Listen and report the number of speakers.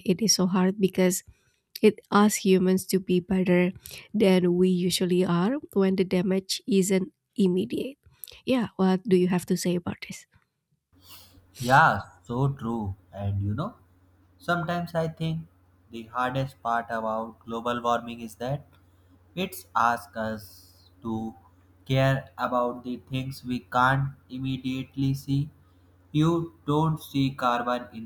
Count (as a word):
two